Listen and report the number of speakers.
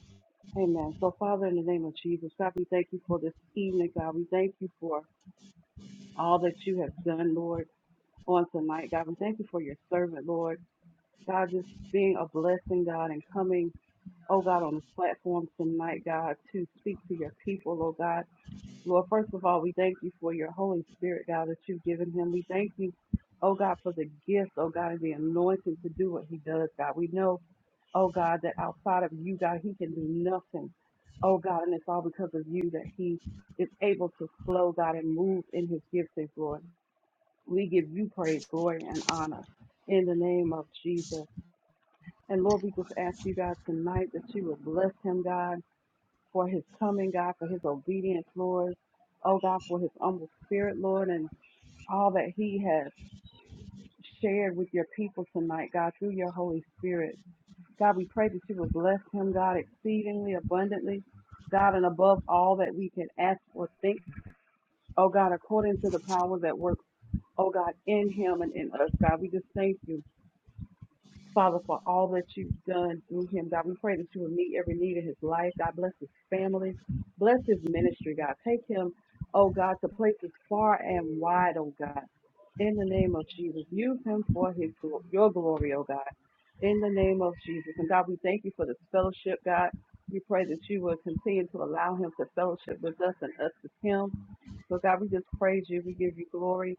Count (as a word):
one